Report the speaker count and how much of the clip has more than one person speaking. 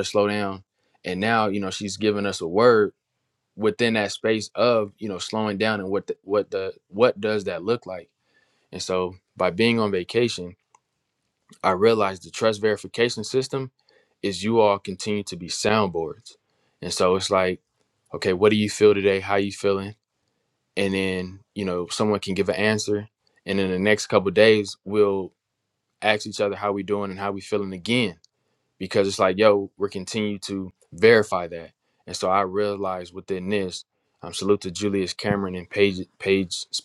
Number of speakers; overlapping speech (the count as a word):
one, no overlap